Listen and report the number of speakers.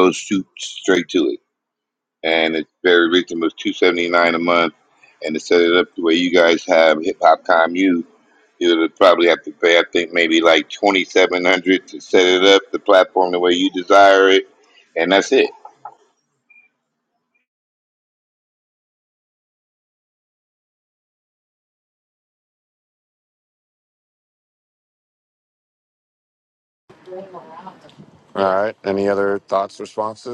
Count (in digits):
2